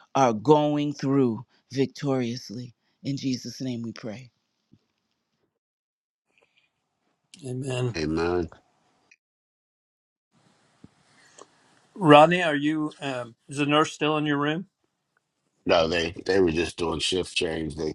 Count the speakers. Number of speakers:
3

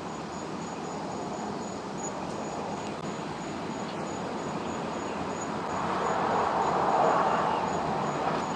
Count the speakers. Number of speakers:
0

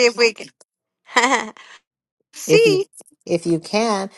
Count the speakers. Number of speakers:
2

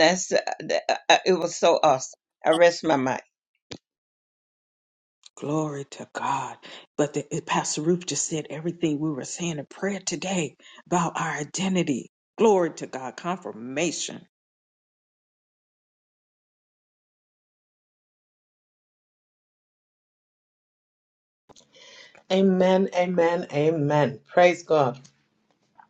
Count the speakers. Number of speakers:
3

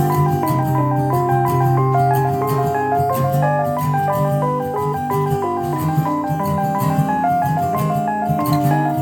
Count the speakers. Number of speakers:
0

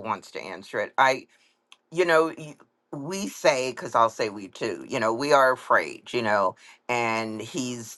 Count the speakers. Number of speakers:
1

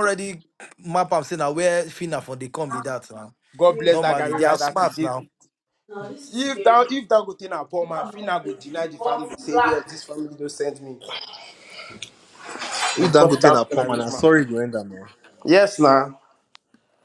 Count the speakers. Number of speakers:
3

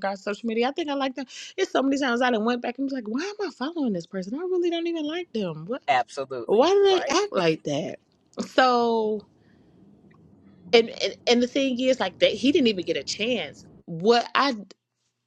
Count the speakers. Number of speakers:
2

